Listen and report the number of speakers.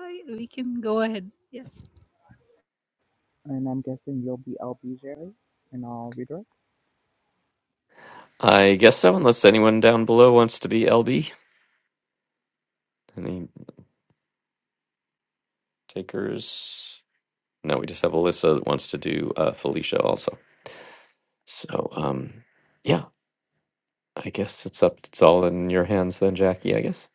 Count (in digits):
3